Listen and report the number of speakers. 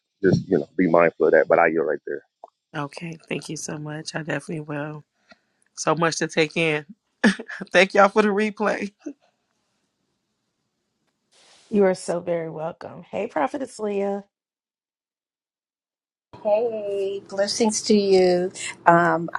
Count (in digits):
4